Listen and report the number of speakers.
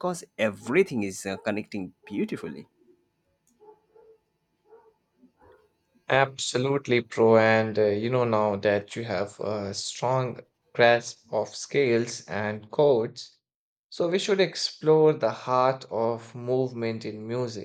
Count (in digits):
2